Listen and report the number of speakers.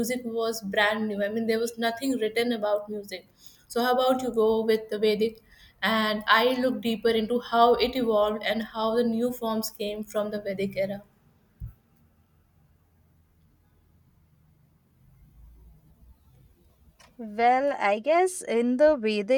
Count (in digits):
2